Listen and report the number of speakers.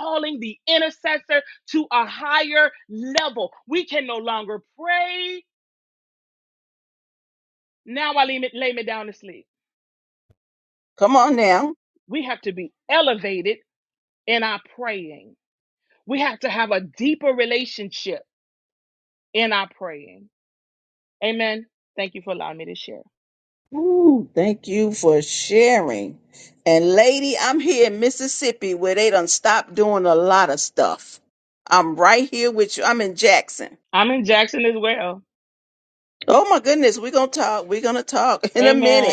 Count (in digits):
2